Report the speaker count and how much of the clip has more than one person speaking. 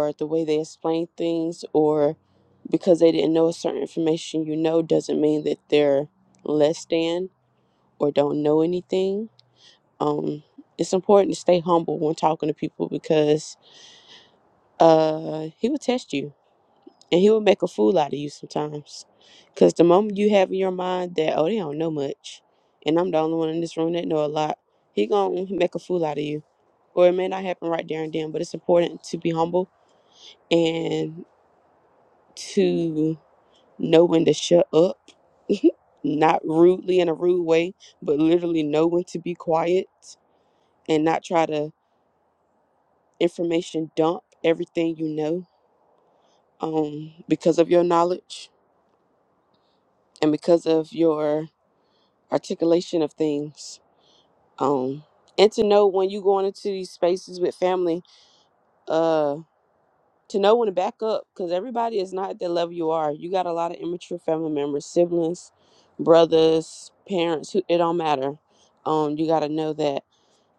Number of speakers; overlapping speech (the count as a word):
one, no overlap